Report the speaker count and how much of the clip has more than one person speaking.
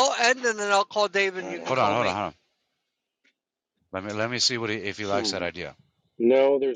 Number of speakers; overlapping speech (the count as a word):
three, about 16%